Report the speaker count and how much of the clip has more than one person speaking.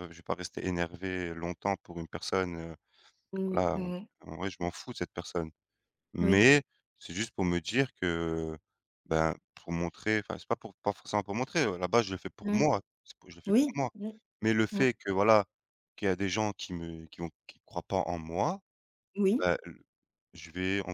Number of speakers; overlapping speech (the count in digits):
2, about 7%